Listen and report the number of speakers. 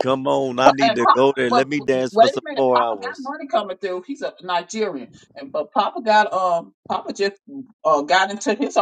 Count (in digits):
2